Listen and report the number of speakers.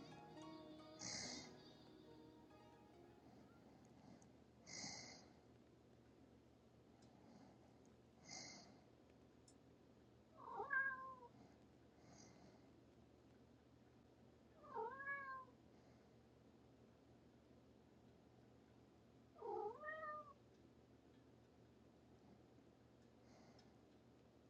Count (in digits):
0